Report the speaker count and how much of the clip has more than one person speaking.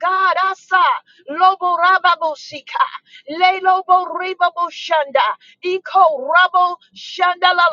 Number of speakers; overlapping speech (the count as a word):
one, no overlap